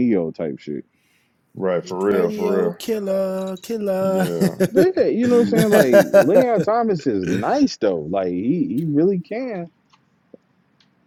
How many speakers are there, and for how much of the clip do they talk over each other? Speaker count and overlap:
3, about 12%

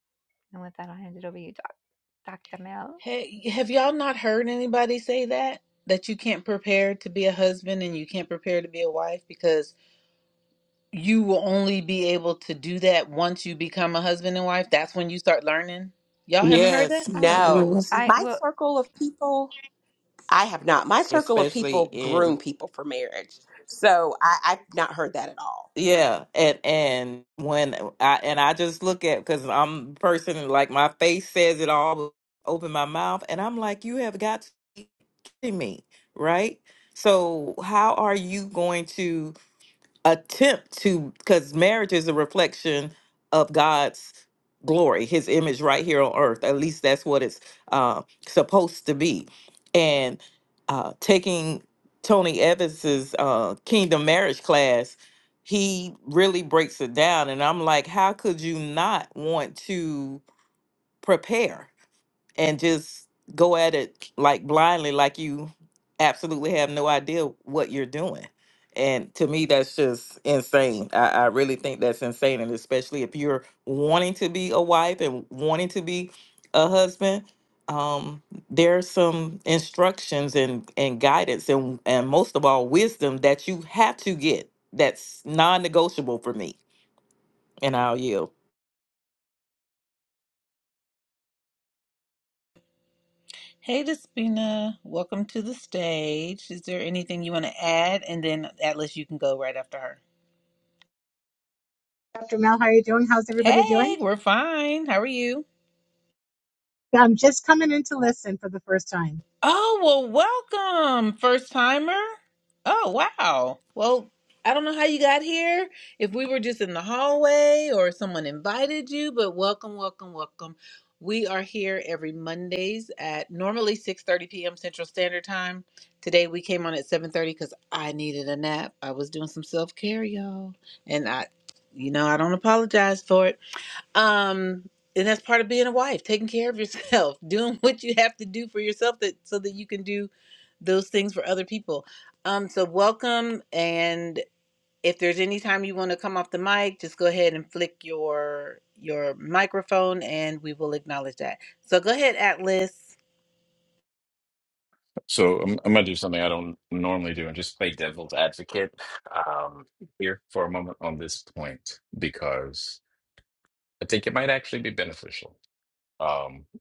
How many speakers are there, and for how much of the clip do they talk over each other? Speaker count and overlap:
6, about 2%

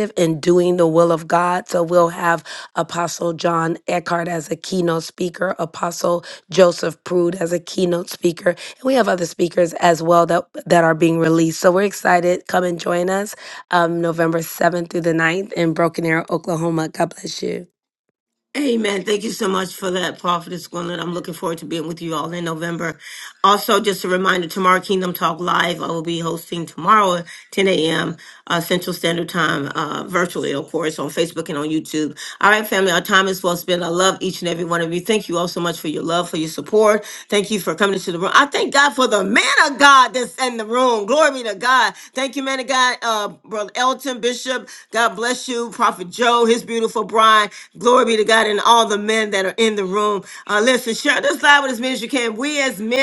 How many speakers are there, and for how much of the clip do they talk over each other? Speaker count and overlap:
2, no overlap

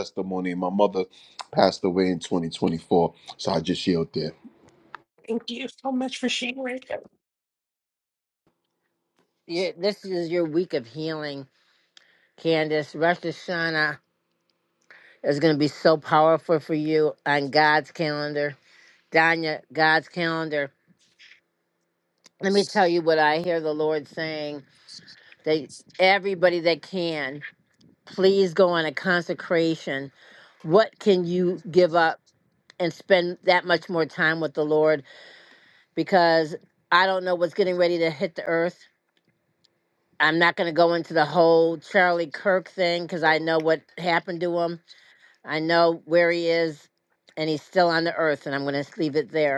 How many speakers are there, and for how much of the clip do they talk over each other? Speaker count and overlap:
3, no overlap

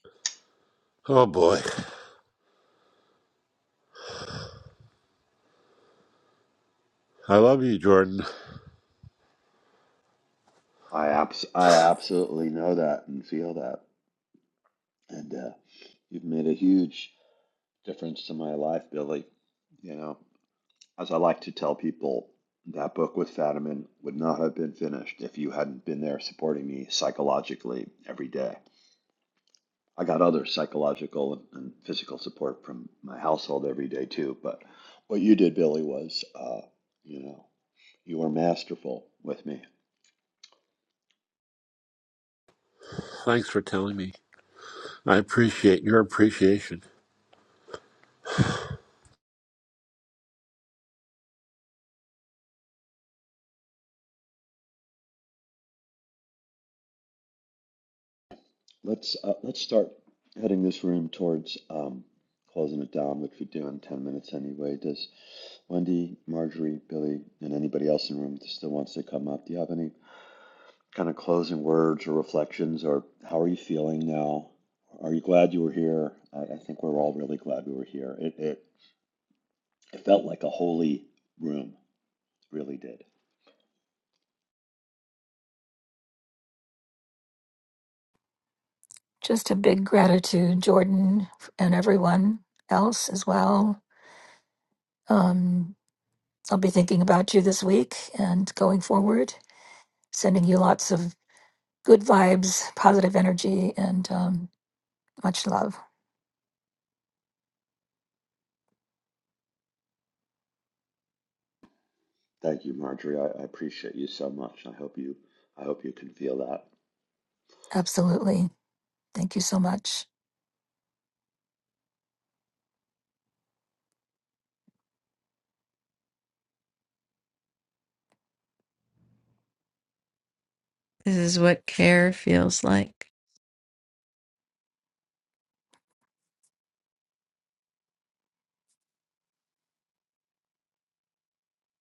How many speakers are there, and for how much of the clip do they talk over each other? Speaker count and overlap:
4, no overlap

